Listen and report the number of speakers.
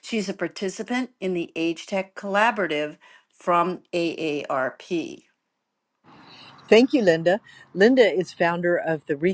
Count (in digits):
2